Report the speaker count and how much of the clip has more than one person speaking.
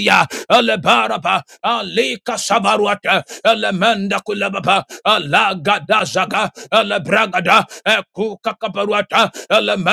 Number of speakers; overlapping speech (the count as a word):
one, no overlap